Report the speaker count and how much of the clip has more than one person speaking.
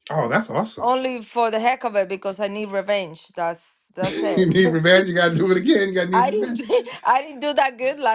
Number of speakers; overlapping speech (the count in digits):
2, about 12%